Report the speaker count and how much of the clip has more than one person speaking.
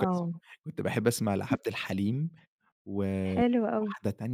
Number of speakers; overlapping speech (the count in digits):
2, about 6%